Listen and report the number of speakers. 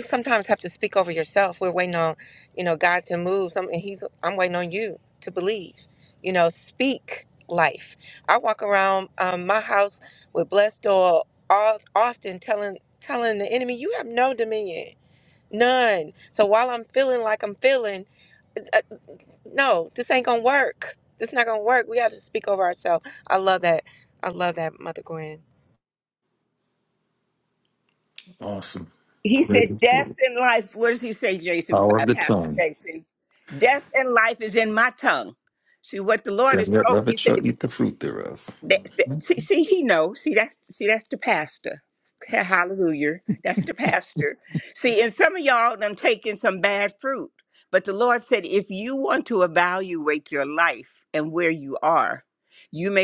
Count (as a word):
three